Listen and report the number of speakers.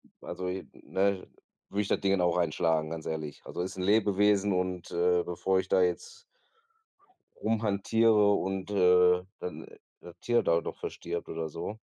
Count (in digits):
1